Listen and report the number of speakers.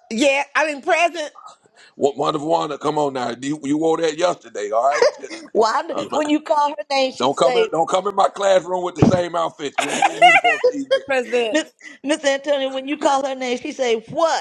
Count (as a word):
three